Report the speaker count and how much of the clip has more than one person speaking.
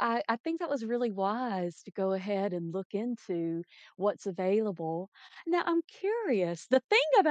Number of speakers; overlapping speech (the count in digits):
1, no overlap